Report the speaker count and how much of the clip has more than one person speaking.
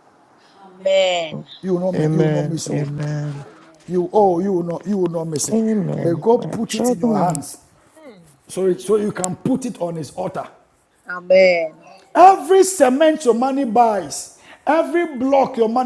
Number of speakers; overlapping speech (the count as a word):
three, about 15%